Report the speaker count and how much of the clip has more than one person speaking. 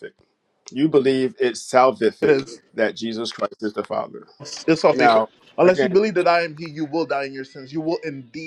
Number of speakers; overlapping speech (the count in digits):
2, about 10%